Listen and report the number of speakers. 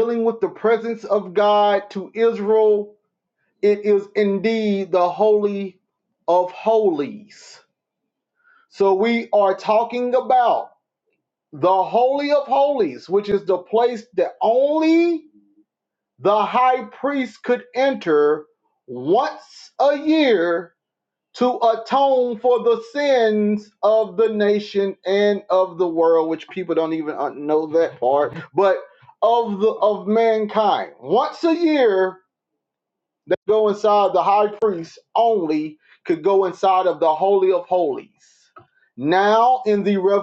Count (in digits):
1